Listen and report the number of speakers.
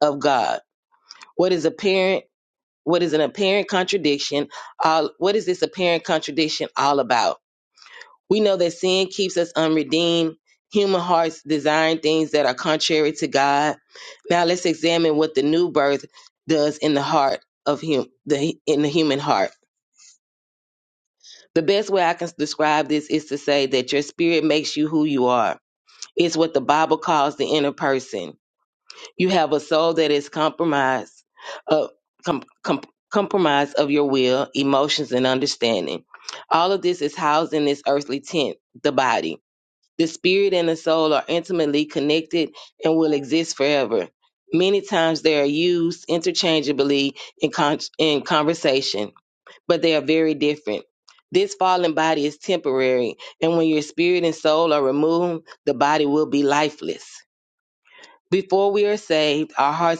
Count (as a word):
one